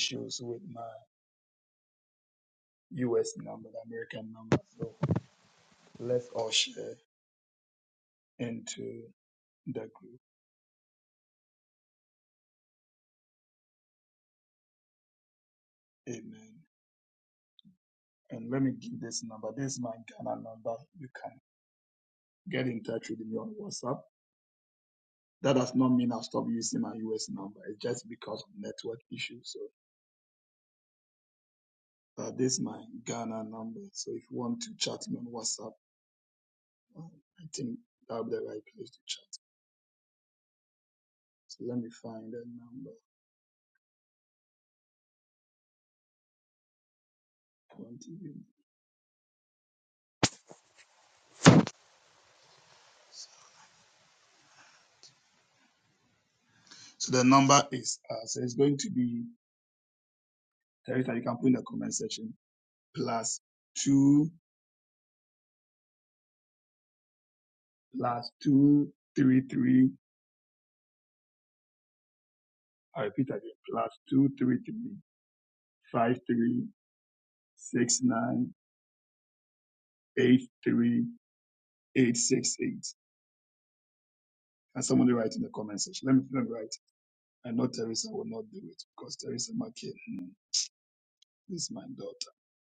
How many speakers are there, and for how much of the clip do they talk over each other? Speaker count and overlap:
one, no overlap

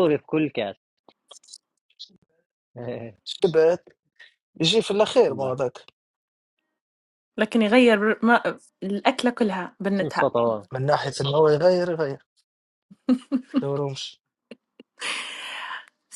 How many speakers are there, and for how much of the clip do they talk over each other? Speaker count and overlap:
three, about 3%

